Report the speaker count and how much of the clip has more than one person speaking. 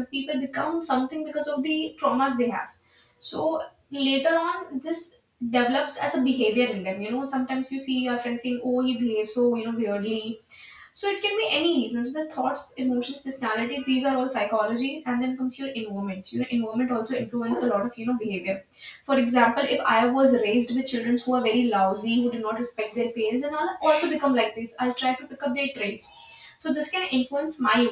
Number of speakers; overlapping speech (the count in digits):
1, no overlap